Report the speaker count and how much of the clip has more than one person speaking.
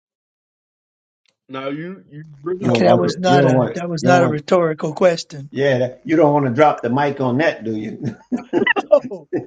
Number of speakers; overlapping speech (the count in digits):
3, about 19%